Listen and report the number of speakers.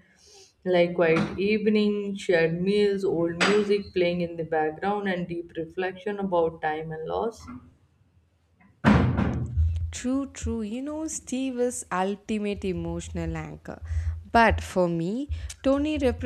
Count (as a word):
two